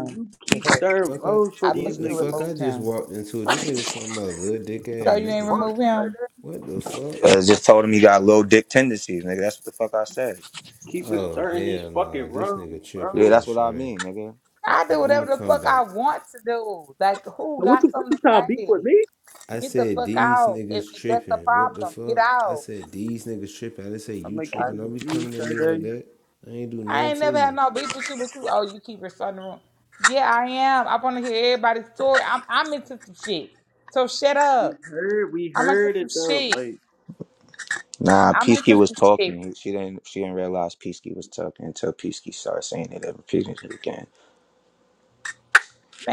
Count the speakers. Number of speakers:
four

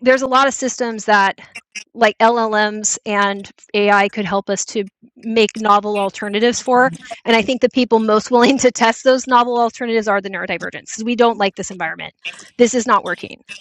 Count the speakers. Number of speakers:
one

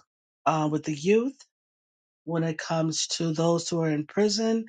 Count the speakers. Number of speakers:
one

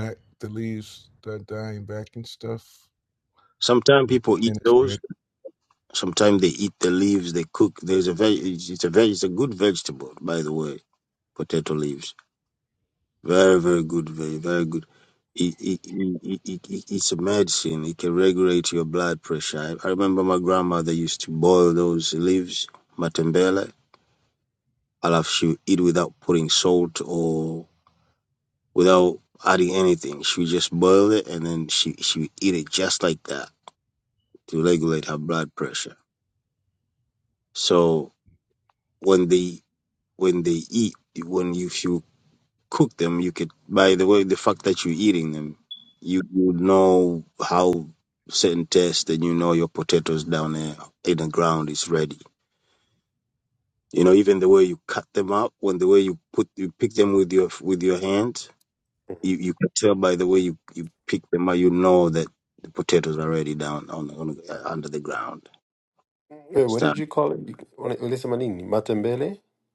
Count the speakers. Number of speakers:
three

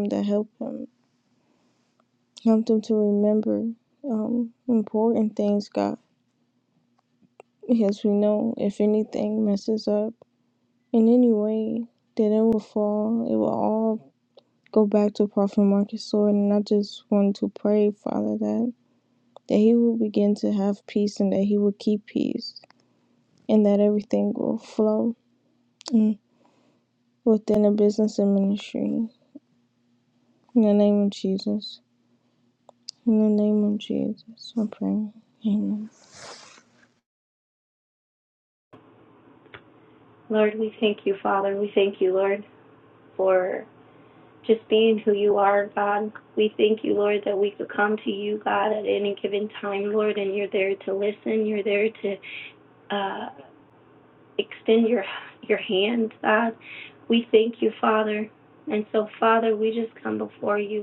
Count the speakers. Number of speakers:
two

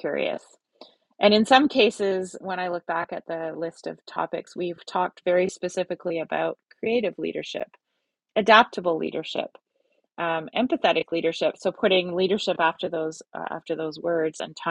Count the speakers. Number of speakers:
one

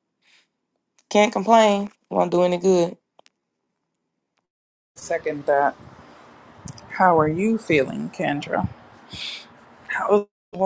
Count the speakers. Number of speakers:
two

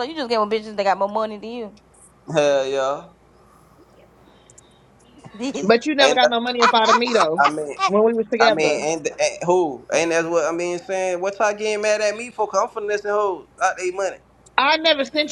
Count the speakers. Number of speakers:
three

